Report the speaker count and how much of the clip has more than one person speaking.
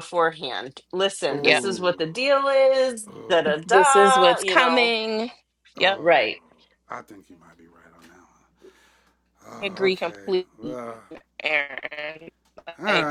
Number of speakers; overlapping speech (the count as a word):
three, about 31%